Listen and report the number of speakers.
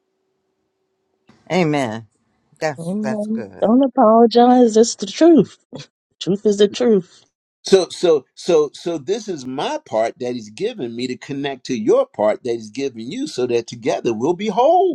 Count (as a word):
three